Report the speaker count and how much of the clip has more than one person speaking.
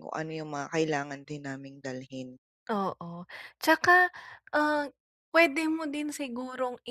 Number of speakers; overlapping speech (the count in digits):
2, no overlap